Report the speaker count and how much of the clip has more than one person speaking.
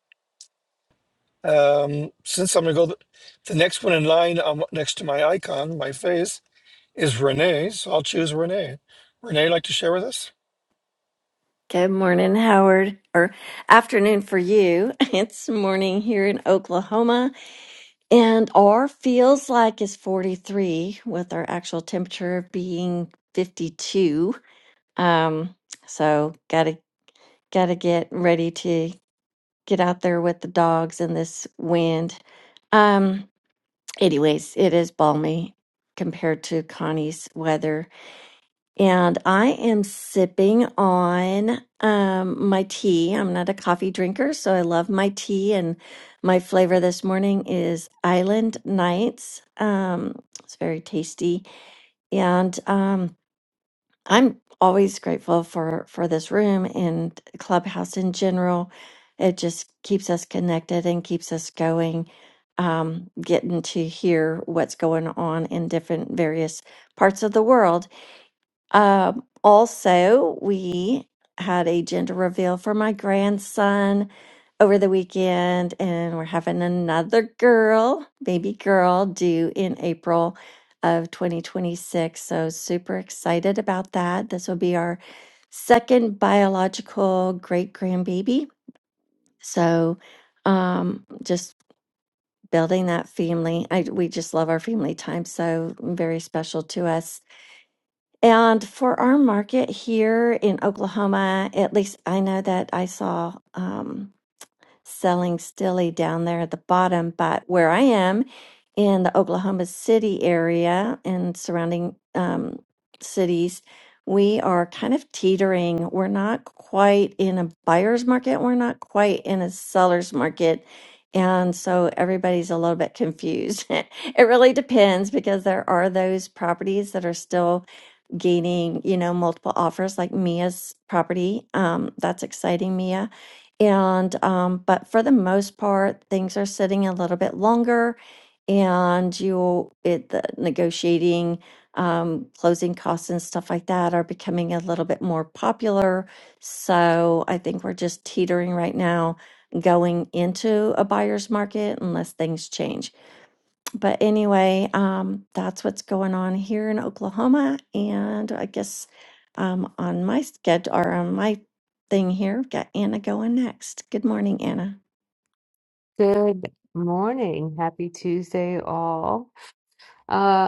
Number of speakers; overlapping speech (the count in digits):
3, no overlap